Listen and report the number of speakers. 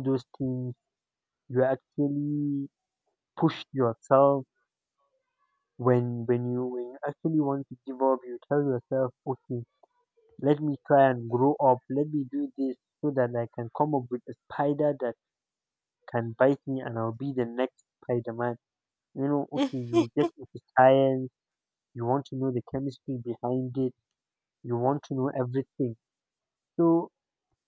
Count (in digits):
1